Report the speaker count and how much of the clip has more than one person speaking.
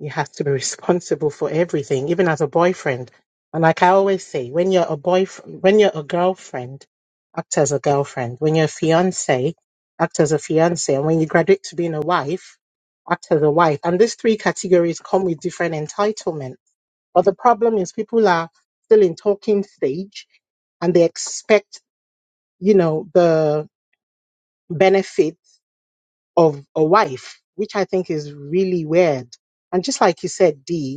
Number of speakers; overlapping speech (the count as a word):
one, no overlap